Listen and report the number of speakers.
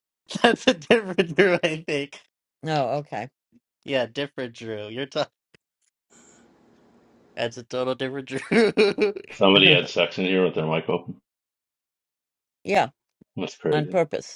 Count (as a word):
three